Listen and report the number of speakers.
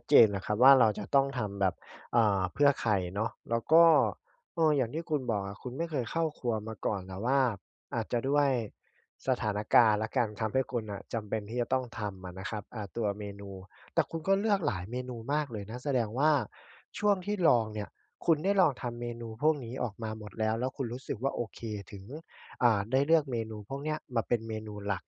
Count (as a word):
one